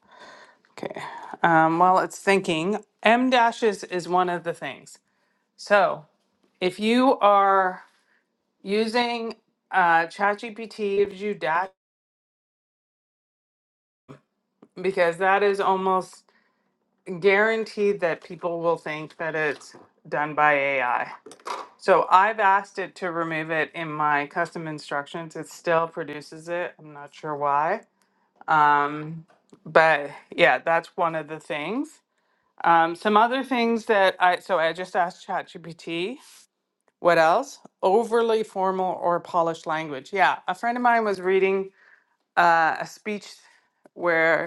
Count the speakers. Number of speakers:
1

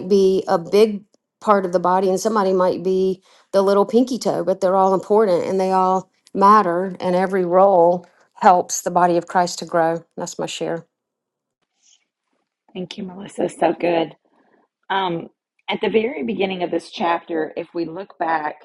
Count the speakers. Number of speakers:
2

